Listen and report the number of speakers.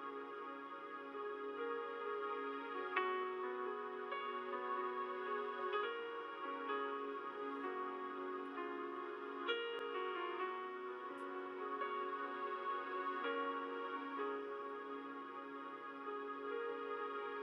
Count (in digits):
0